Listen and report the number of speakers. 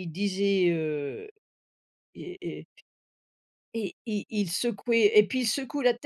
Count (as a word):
one